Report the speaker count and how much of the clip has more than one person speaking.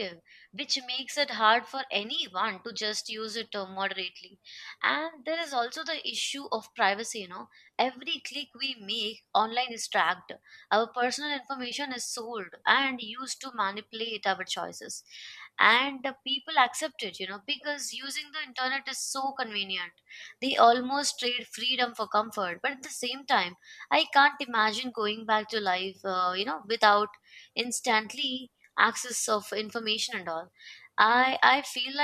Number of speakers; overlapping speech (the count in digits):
1, no overlap